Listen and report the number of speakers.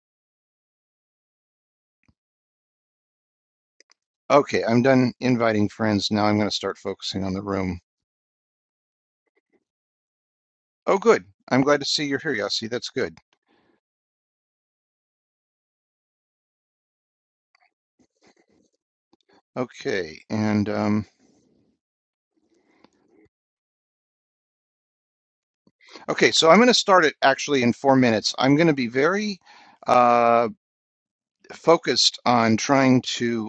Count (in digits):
1